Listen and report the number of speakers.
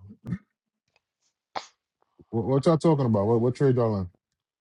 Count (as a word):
one